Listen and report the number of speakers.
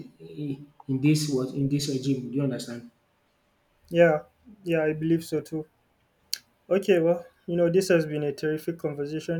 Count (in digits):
2